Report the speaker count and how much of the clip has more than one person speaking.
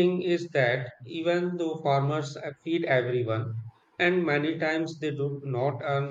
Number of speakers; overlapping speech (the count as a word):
one, no overlap